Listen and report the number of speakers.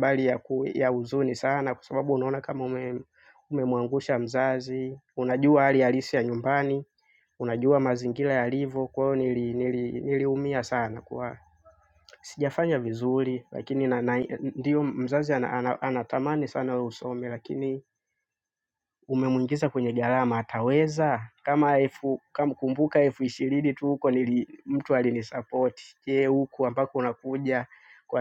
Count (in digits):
1